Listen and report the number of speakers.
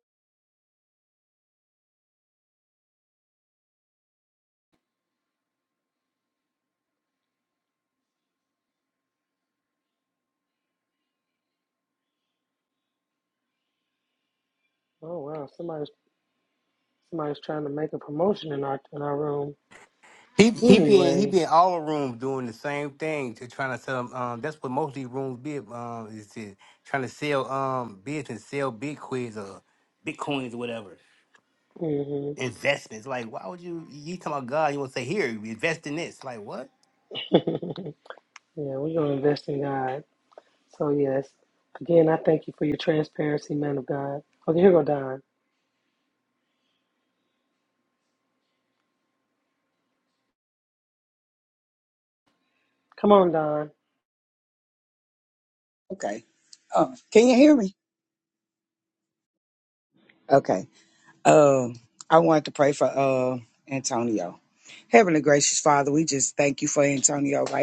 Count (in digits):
3